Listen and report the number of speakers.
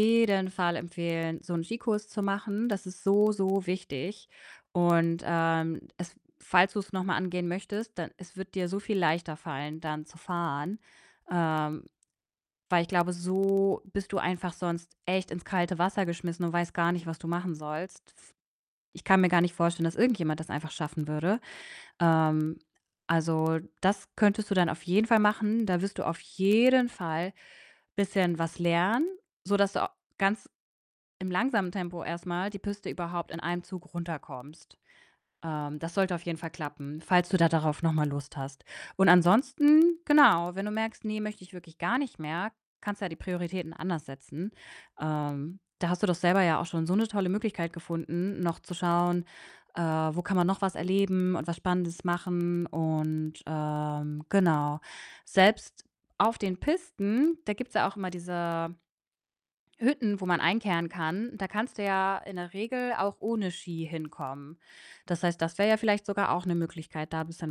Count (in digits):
1